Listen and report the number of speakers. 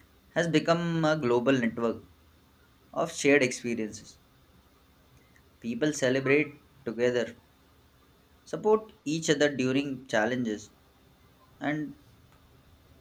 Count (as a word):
one